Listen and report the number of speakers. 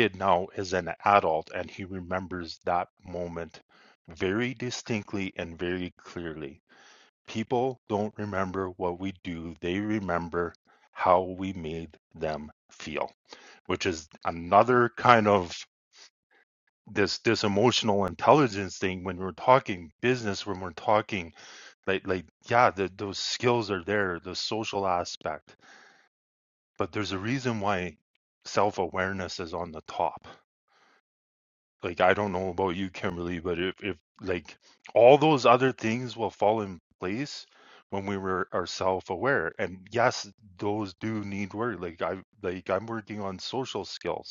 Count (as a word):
one